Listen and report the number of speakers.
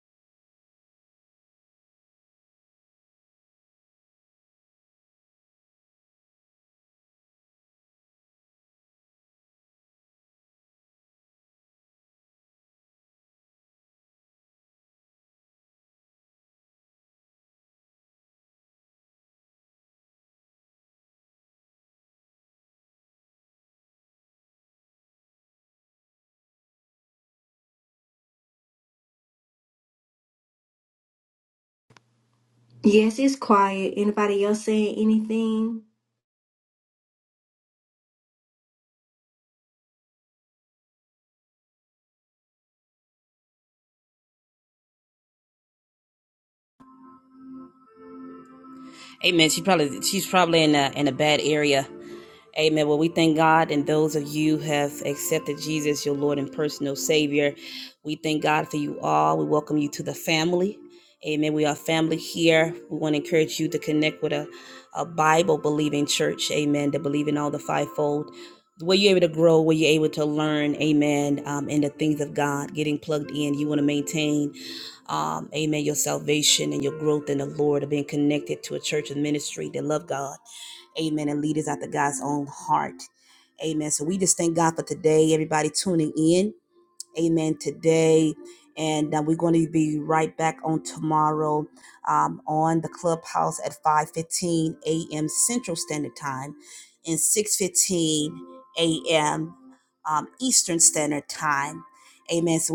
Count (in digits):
2